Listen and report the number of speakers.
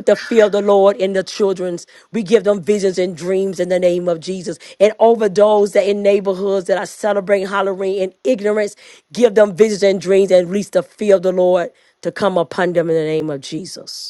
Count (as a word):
one